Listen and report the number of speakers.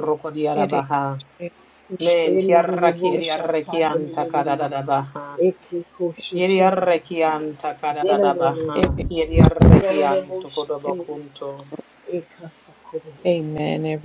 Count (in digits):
3